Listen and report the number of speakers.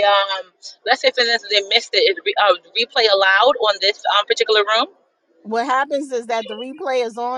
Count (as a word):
two